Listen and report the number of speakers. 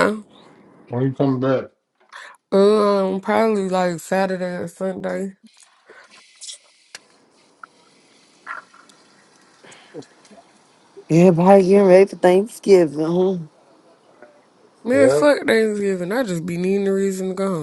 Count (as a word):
three